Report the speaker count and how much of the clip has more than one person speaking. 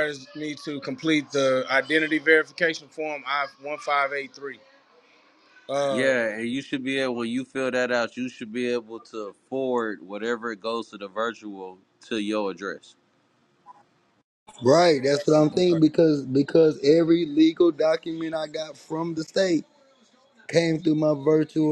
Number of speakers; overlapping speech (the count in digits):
3, about 2%